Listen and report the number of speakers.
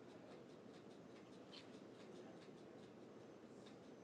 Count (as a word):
zero